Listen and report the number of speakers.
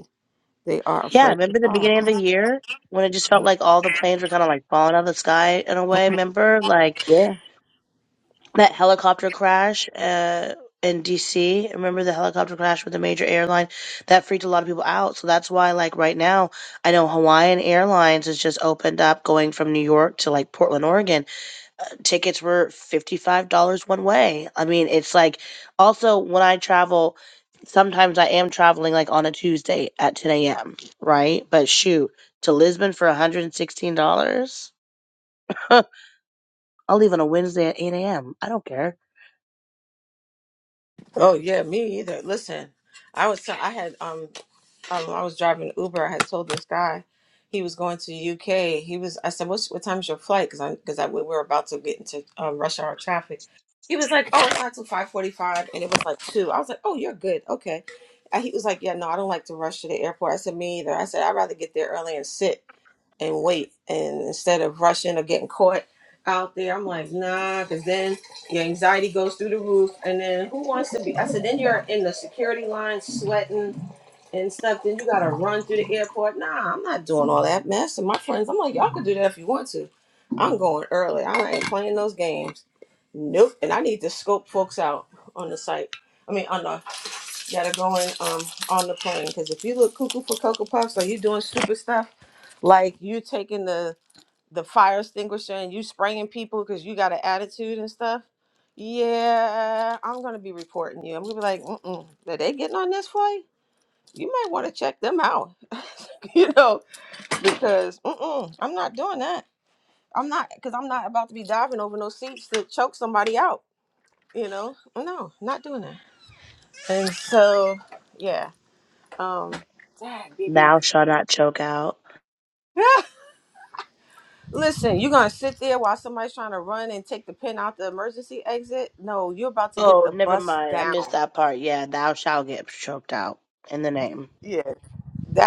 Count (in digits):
2